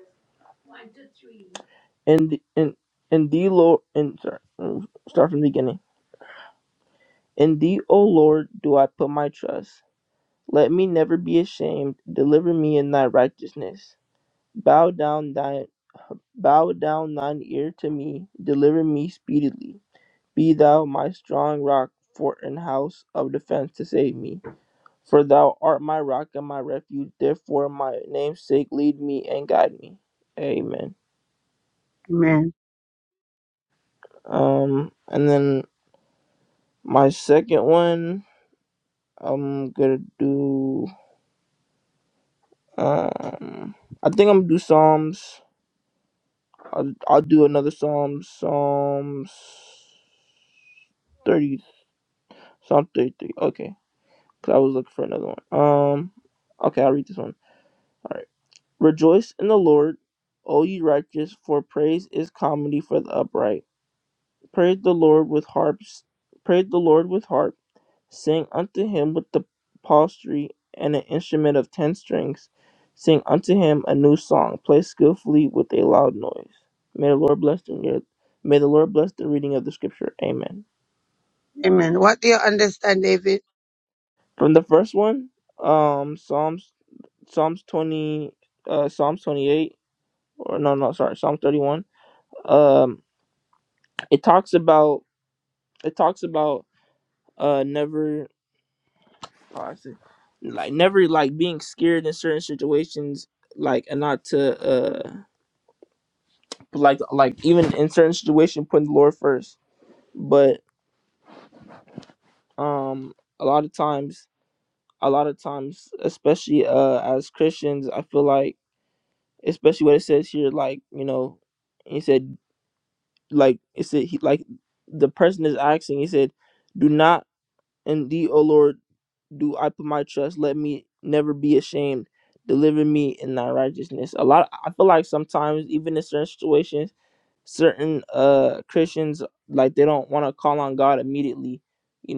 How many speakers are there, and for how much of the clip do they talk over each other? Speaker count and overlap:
two, no overlap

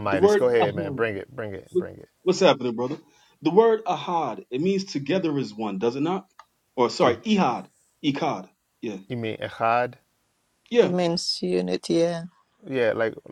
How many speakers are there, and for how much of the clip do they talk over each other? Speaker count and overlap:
three, about 10%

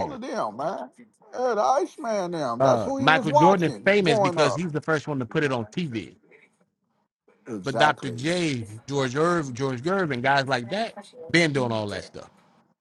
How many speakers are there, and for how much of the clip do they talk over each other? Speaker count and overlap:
two, about 22%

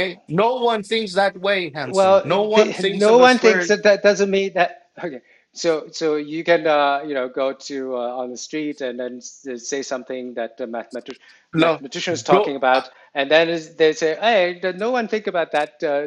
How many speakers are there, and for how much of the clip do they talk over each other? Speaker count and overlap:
two, about 17%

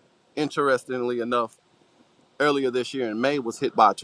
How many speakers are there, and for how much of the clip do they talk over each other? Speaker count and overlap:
one, no overlap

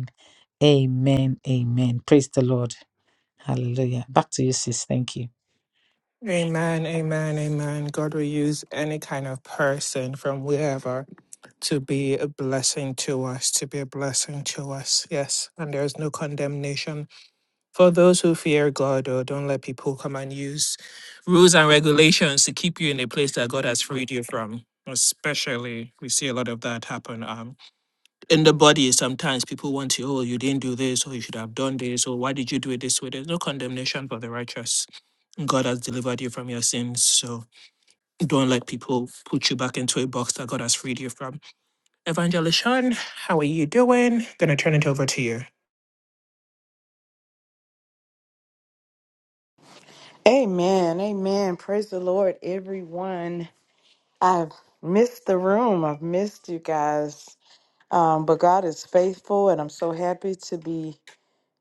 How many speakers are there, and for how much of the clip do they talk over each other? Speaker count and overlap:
three, no overlap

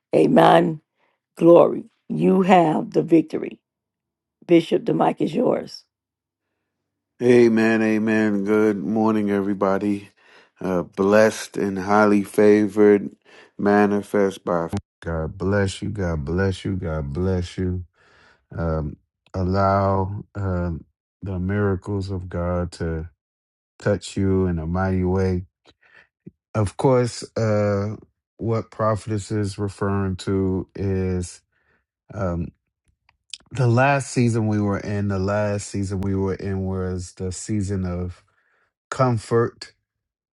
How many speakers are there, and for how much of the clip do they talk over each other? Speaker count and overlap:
two, no overlap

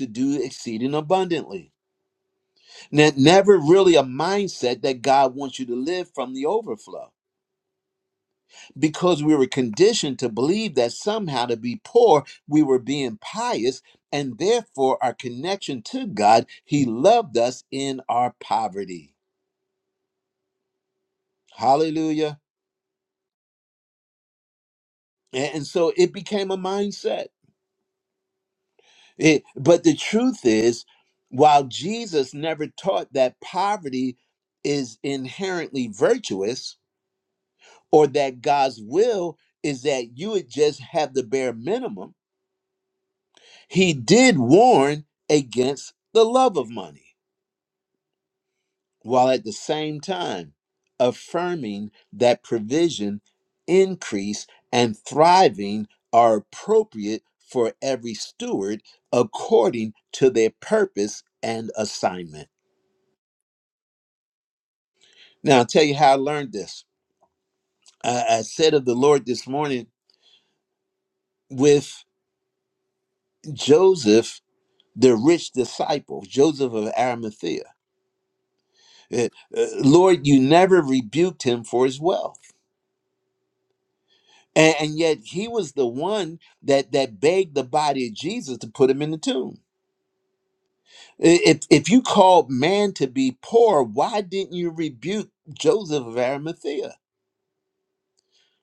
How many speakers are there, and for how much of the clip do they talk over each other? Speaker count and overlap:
one, no overlap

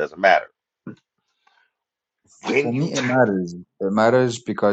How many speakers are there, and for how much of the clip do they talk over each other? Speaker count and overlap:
two, about 14%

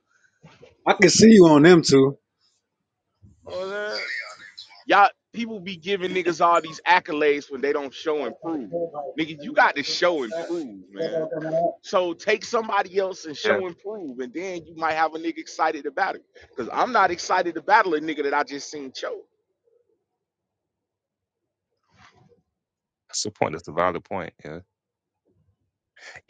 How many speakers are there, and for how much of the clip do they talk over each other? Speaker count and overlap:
three, about 1%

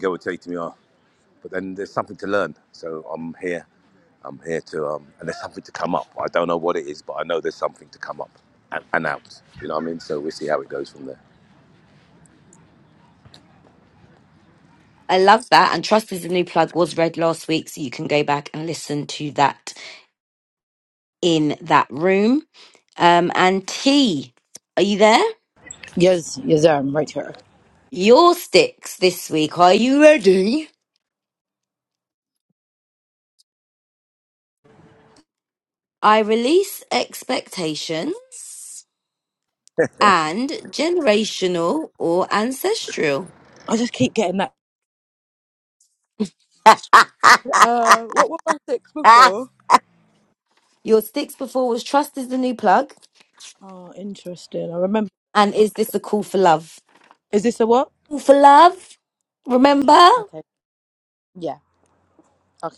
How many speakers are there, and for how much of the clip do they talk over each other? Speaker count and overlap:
three, no overlap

